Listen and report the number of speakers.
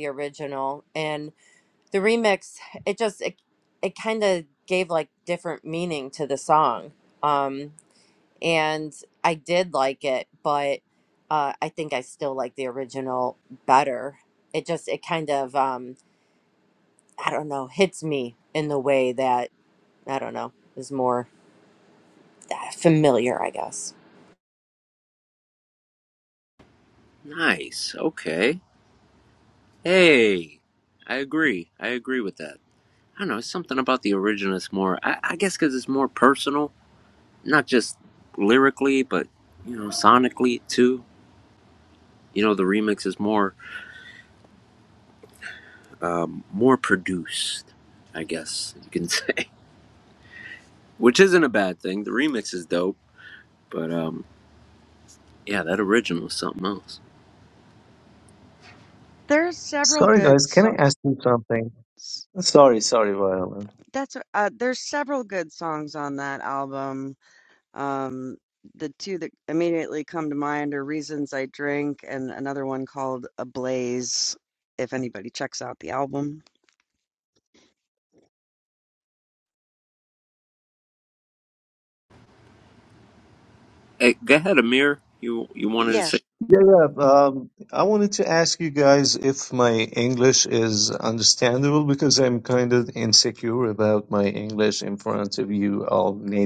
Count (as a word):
four